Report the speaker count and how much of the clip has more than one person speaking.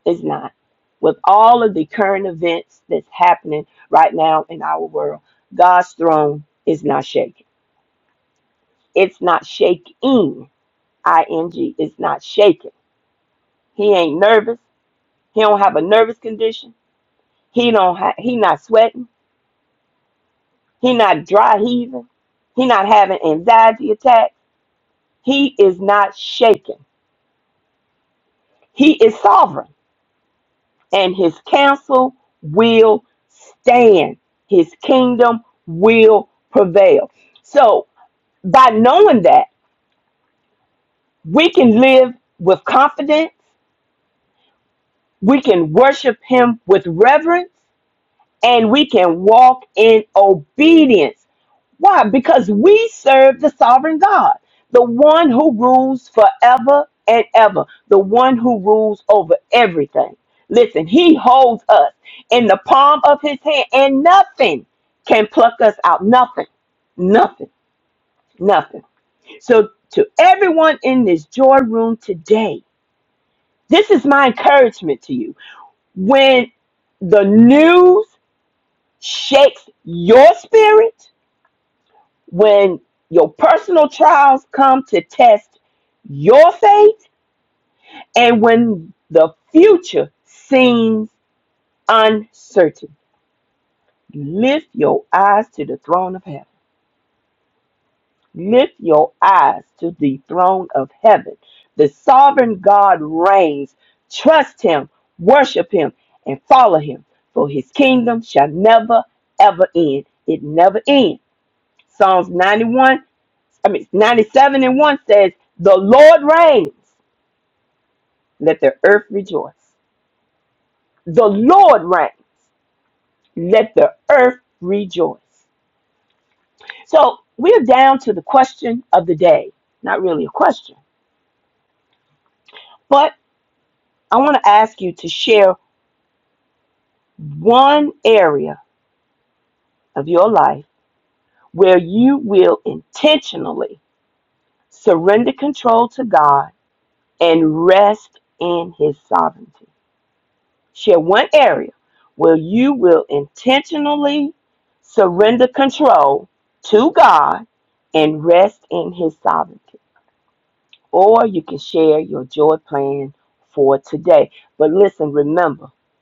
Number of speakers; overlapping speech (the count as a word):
one, no overlap